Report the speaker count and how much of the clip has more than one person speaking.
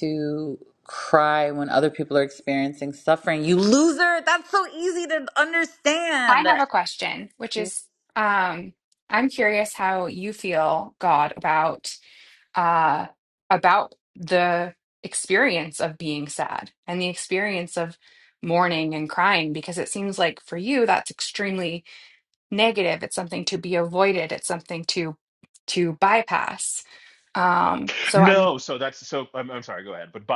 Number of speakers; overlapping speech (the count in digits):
3, about 2%